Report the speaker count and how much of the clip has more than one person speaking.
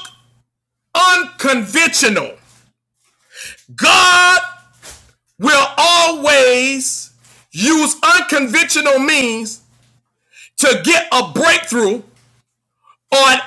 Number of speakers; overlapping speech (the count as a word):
one, no overlap